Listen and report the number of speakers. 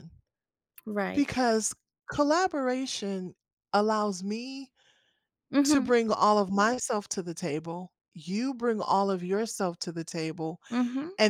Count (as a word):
two